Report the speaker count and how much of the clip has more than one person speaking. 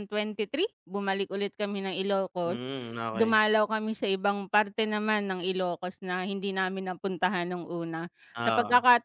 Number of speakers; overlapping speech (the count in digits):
2, about 8%